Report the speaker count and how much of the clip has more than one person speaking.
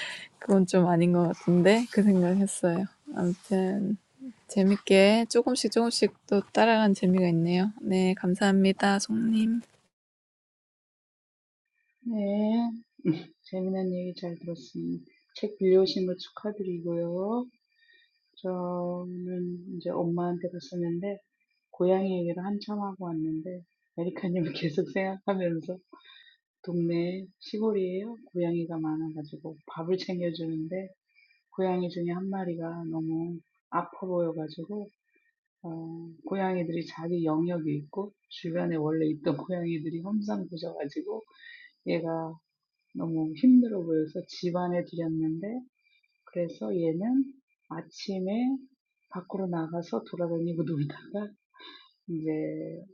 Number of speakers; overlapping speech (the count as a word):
two, no overlap